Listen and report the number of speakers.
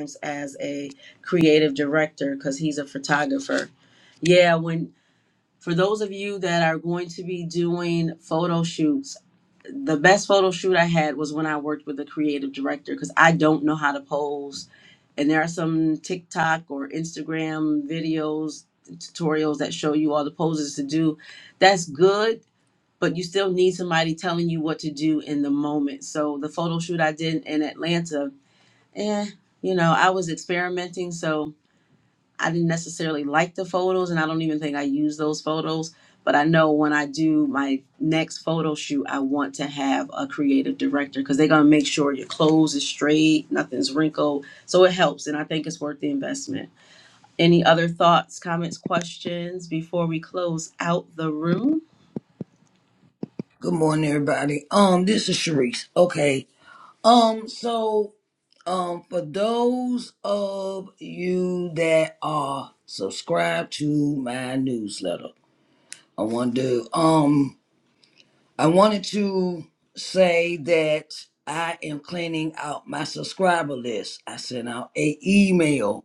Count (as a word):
two